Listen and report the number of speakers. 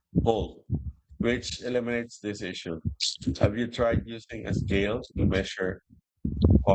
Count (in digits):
1